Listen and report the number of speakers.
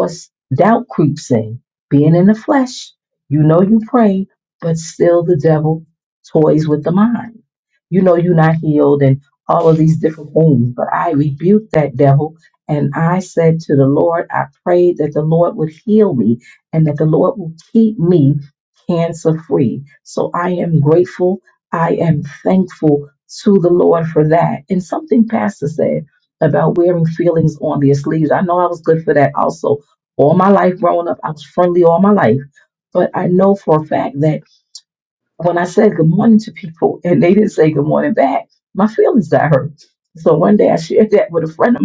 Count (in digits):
1